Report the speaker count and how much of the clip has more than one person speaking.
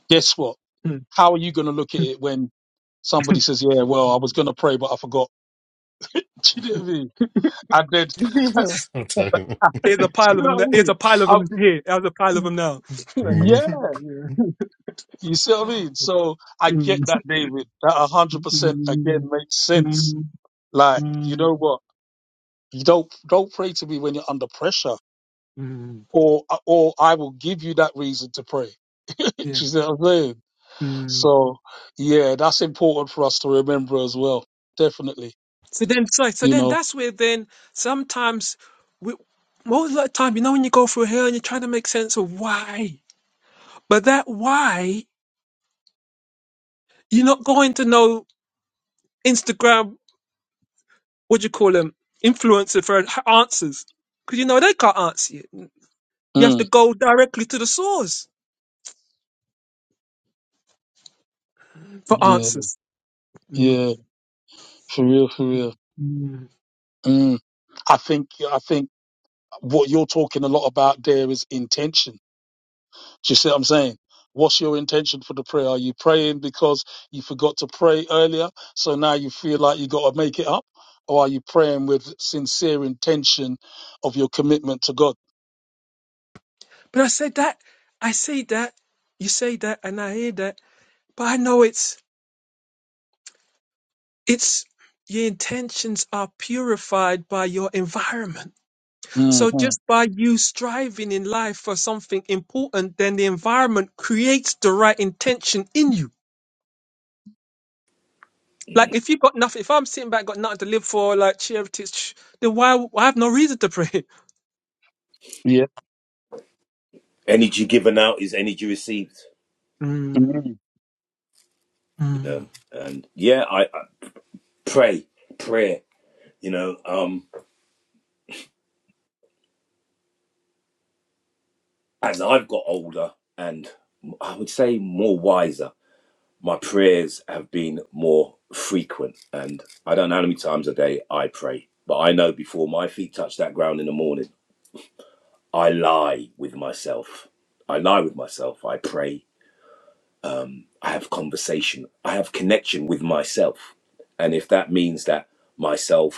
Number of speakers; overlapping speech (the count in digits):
4, about 3%